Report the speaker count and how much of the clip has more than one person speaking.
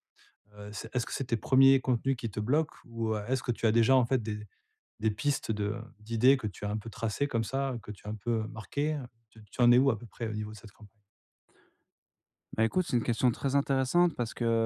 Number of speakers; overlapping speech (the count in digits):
2, no overlap